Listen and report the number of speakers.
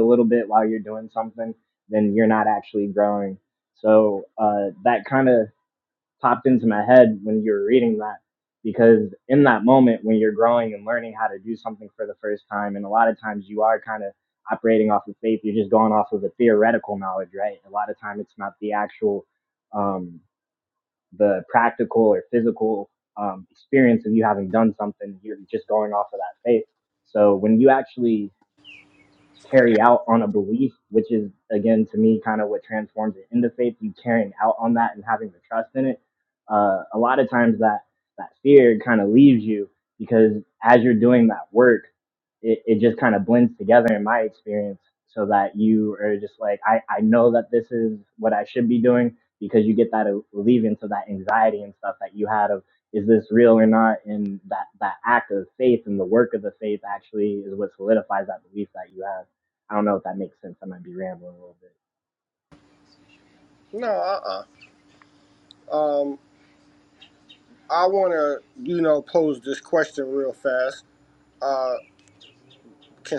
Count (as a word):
two